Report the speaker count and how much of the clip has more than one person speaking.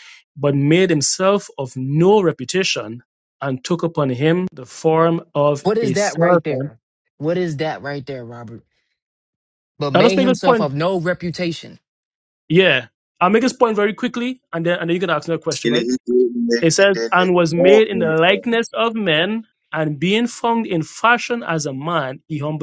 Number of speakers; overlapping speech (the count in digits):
3, about 17%